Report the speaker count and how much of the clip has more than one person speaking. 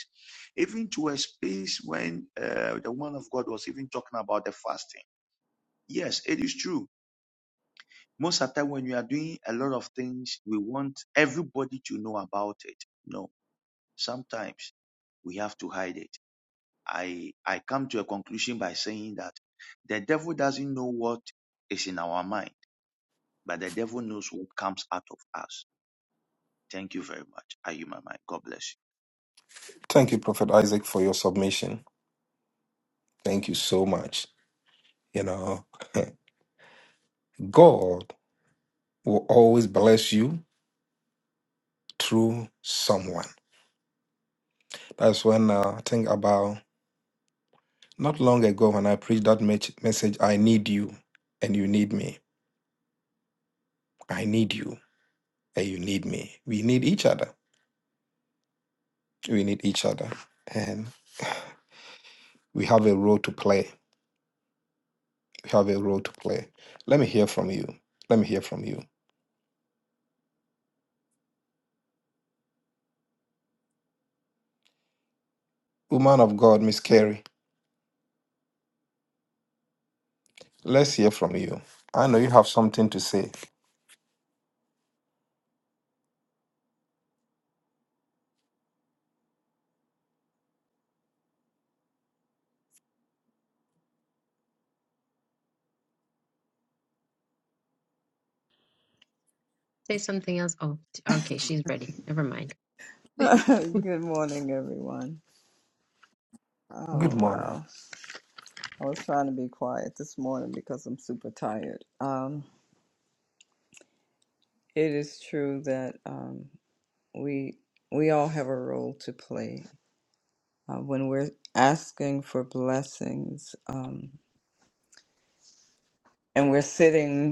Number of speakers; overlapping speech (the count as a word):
four, under 1%